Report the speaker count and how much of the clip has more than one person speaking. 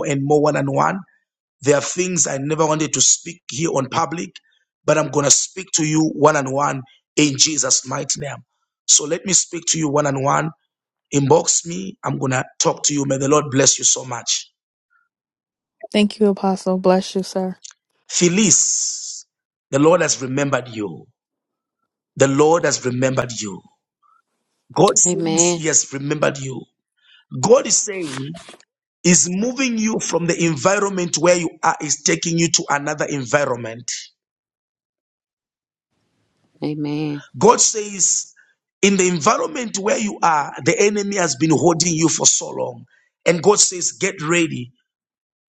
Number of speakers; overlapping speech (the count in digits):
3, about 1%